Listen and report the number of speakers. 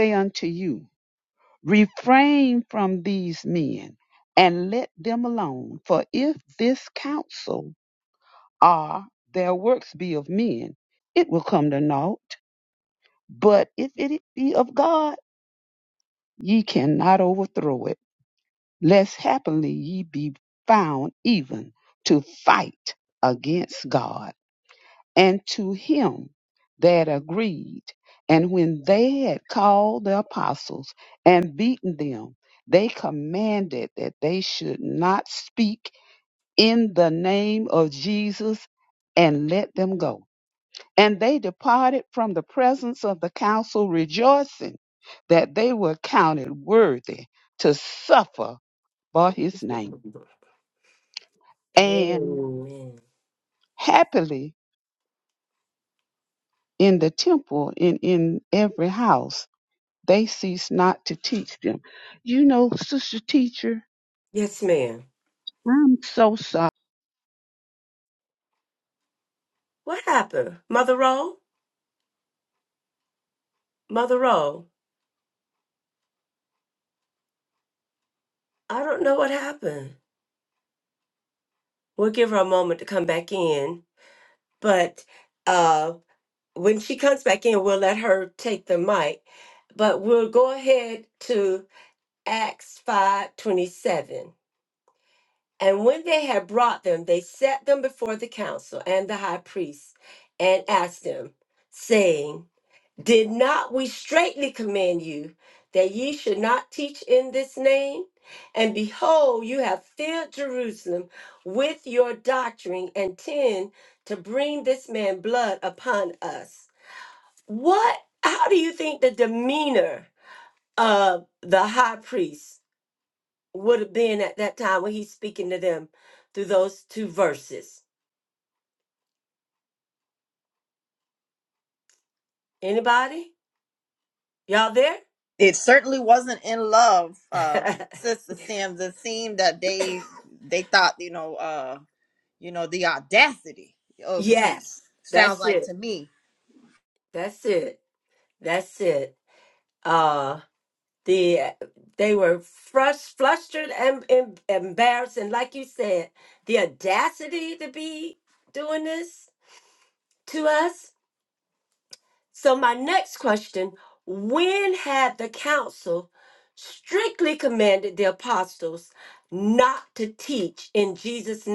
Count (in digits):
3